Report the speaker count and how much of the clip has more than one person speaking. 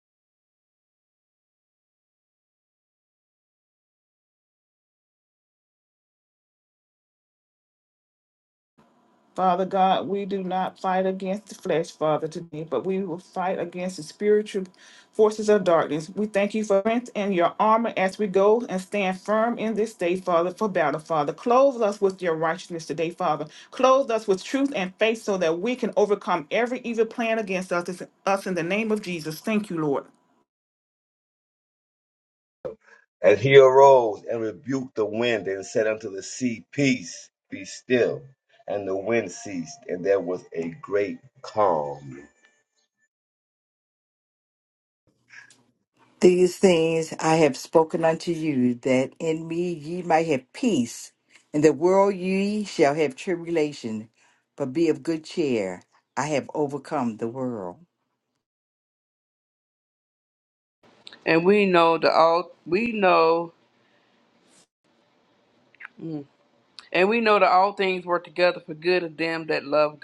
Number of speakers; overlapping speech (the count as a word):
four, no overlap